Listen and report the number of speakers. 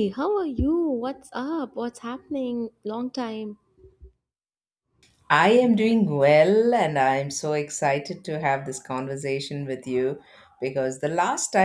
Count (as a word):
two